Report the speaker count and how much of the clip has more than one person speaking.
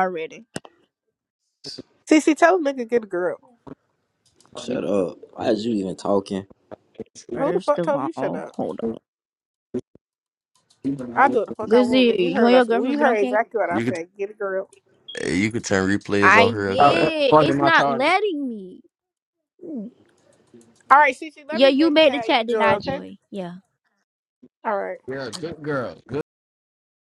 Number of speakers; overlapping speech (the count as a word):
five, about 23%